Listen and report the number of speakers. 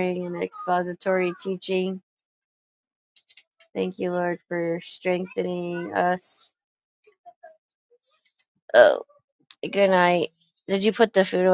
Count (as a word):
one